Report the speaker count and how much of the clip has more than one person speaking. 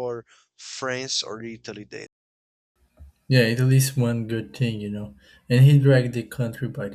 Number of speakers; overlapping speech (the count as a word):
two, no overlap